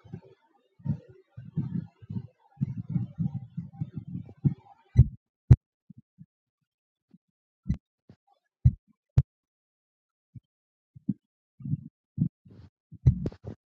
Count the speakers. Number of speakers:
0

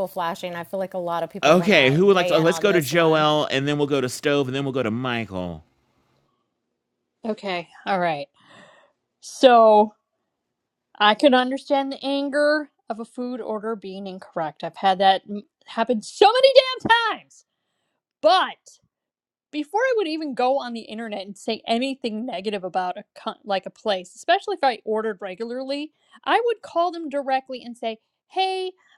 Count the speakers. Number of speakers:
3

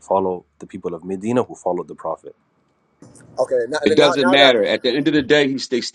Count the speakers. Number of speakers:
3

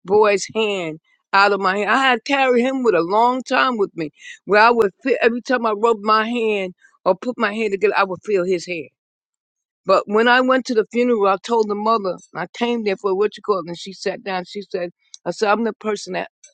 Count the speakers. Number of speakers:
1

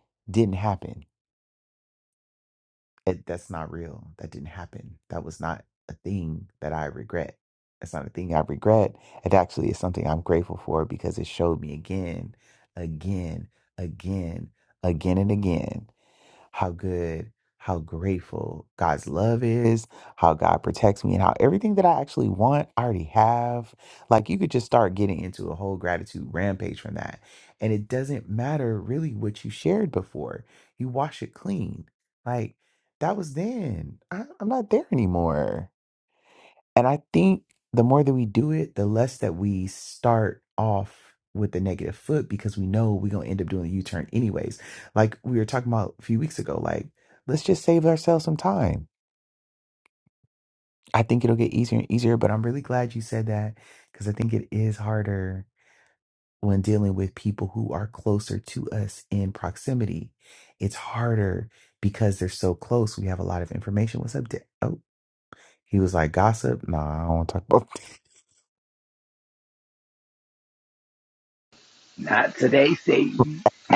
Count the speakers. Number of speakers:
2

